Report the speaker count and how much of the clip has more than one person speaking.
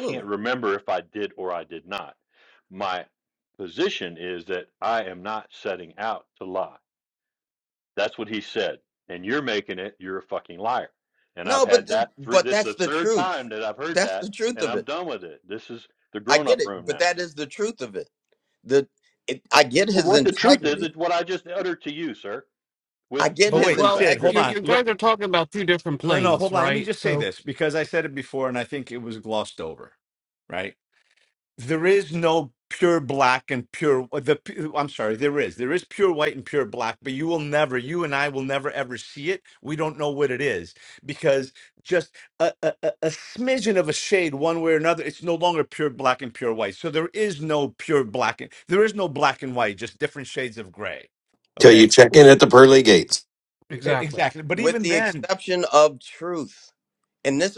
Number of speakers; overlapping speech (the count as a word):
five, about 15%